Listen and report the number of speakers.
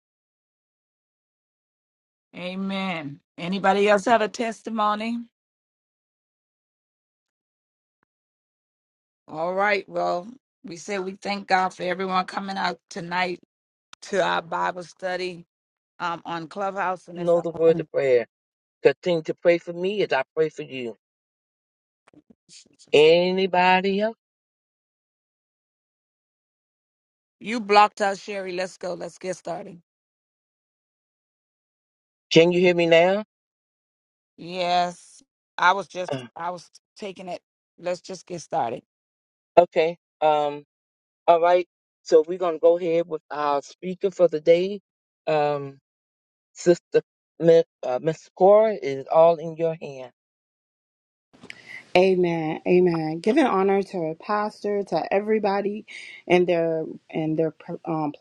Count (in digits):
3